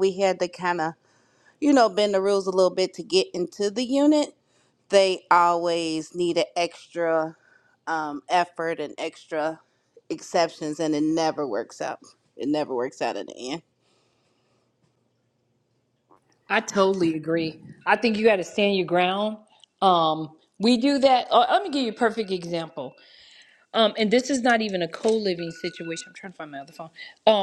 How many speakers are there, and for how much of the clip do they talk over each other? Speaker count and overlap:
two, no overlap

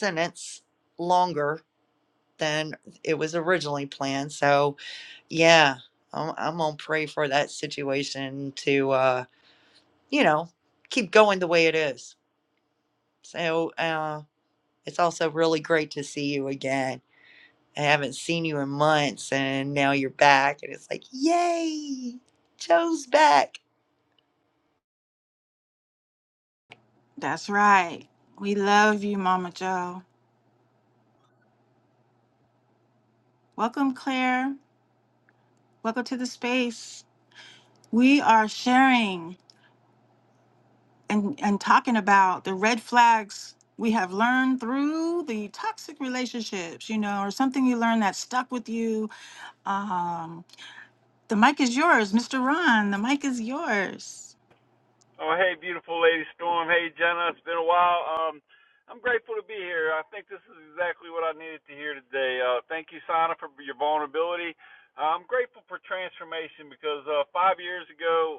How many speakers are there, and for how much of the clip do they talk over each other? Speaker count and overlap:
three, no overlap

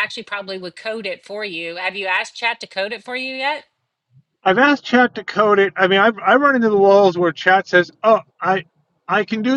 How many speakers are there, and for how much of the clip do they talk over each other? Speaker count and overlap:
two, no overlap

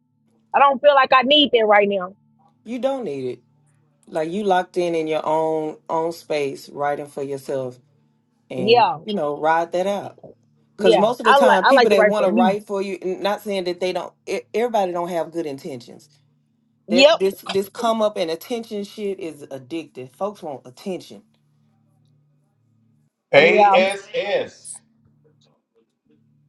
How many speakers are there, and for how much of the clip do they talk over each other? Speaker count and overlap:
three, about 10%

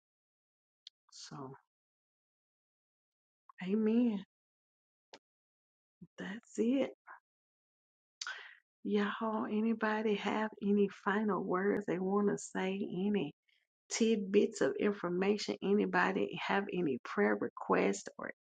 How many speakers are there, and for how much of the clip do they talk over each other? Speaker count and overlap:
one, no overlap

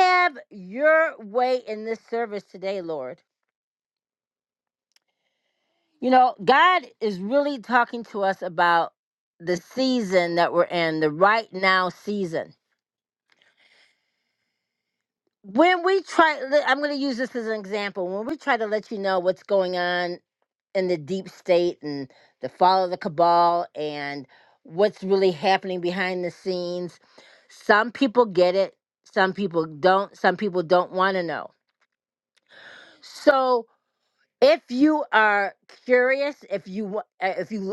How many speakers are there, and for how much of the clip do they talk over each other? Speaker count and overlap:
one, no overlap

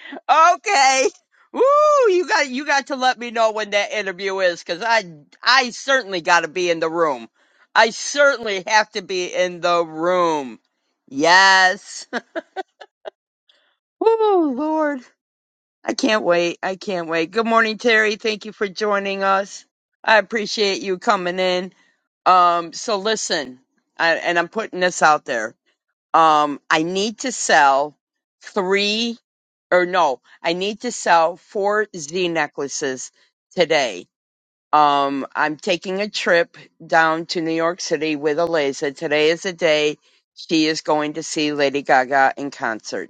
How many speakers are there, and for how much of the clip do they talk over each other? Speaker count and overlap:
one, no overlap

